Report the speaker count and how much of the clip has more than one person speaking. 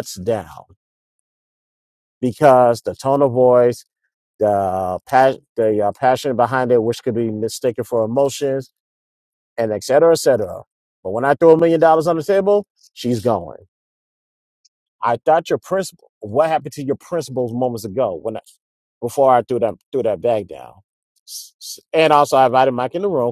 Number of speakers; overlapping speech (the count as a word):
one, no overlap